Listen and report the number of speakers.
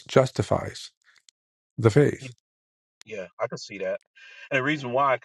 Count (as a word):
two